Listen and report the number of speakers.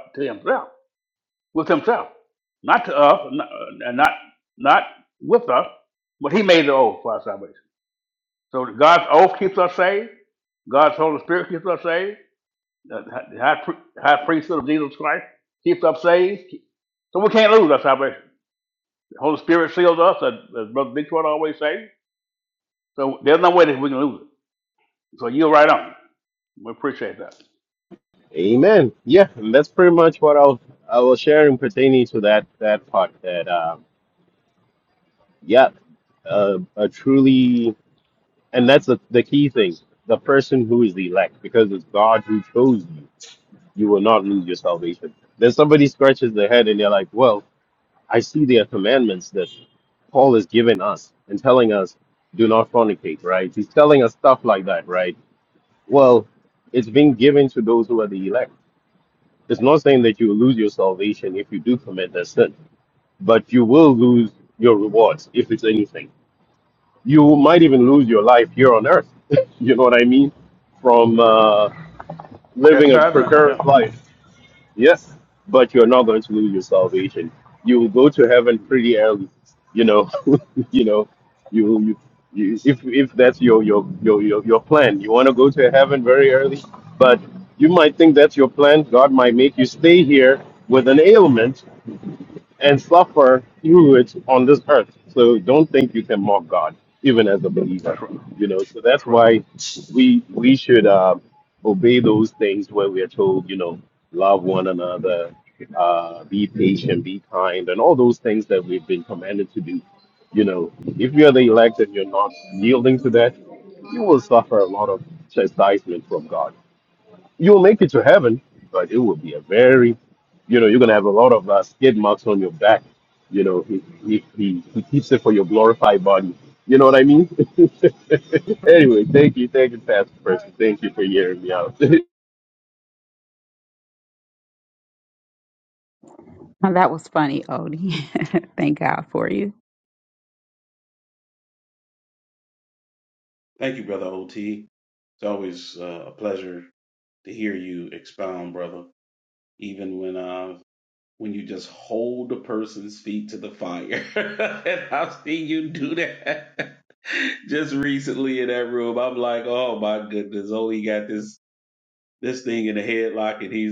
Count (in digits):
4